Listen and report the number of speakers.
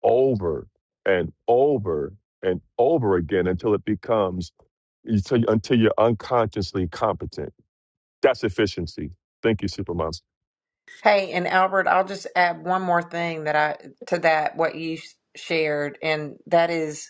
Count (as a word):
two